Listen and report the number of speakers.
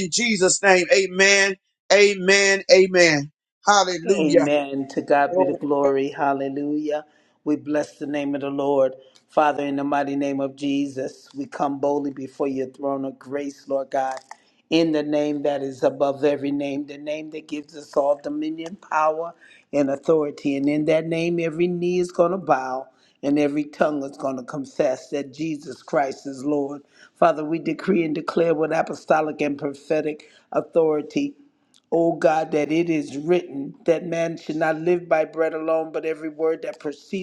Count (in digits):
2